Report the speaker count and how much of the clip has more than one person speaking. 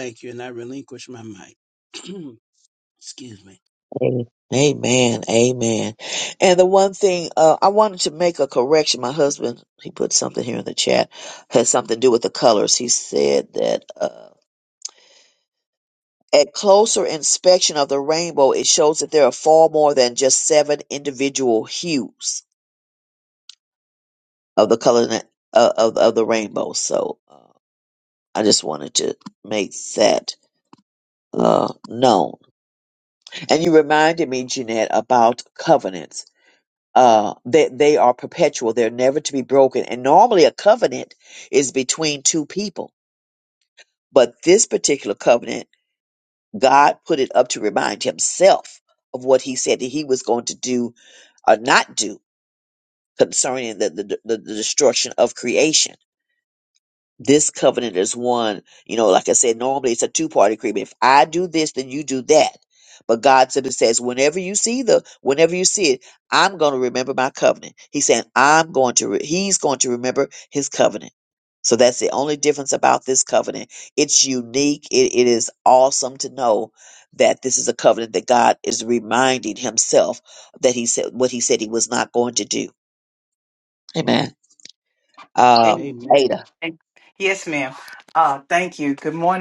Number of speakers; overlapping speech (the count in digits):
3, about 1%